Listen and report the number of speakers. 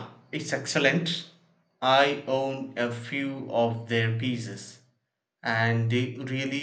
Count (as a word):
one